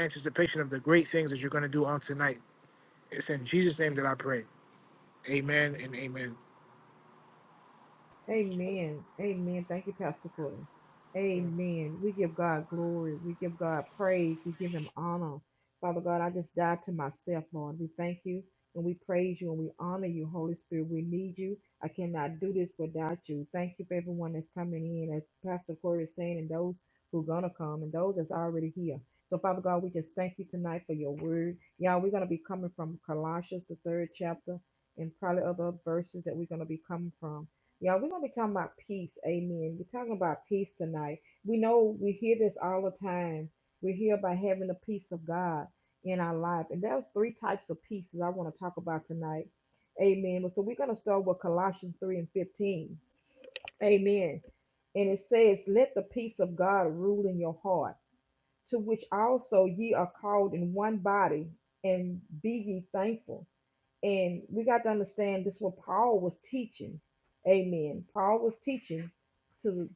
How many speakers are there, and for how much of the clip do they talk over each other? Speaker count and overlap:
two, no overlap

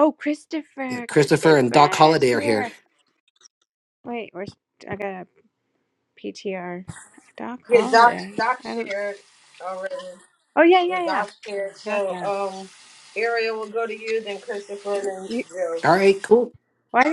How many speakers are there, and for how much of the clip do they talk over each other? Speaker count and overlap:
three, about 24%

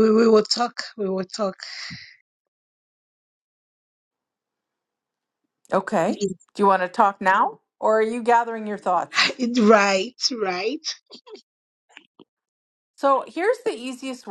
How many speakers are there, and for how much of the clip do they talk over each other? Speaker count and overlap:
two, about 1%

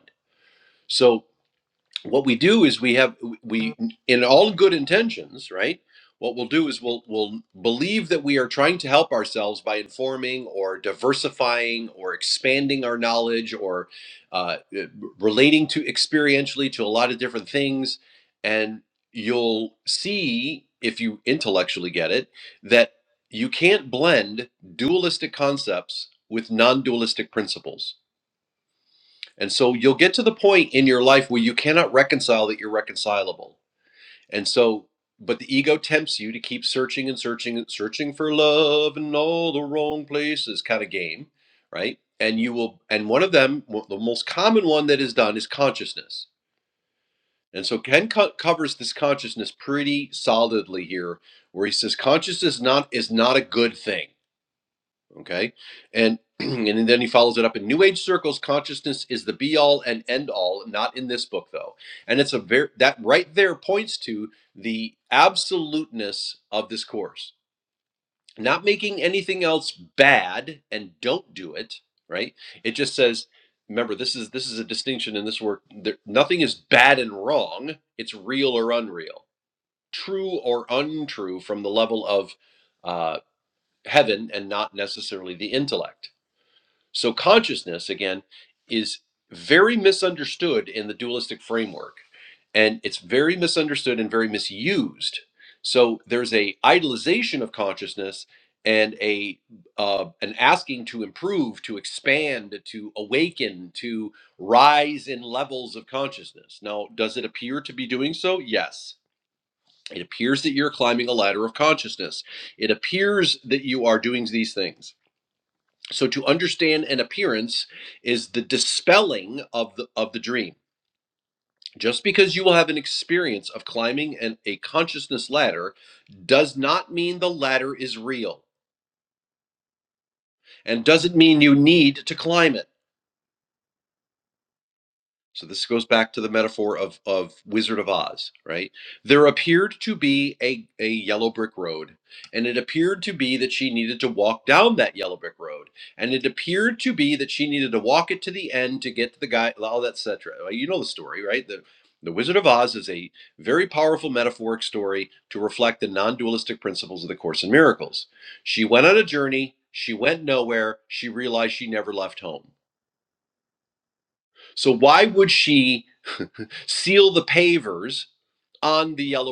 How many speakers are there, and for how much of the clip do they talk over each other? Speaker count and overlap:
one, no overlap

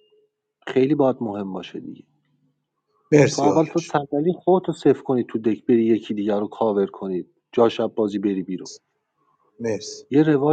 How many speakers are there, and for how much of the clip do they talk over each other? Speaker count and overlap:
two, about 5%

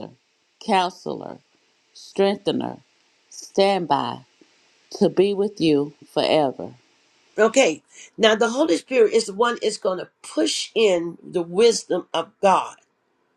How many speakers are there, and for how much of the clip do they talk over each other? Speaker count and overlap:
two, no overlap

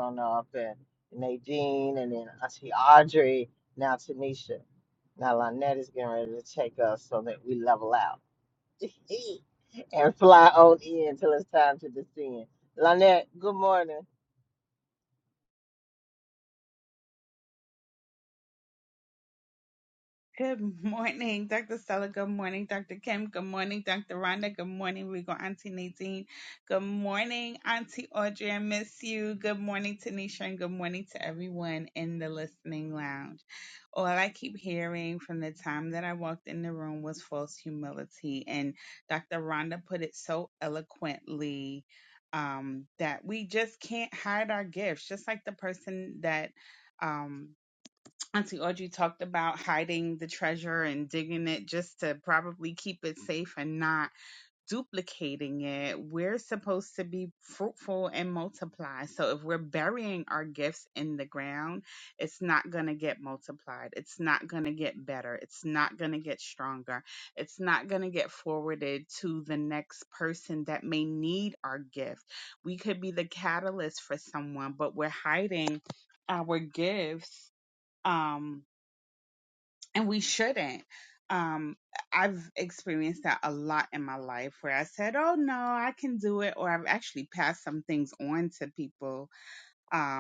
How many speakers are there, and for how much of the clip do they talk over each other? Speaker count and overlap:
two, no overlap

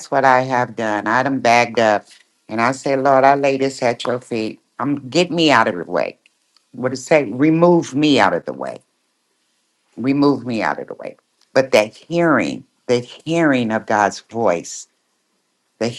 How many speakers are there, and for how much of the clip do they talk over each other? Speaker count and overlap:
one, no overlap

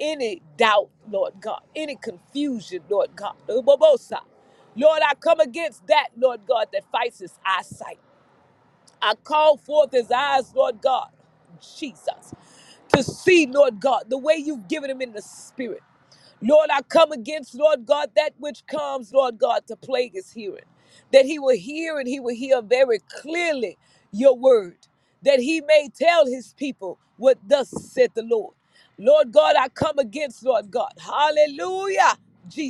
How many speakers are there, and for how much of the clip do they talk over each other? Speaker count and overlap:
one, no overlap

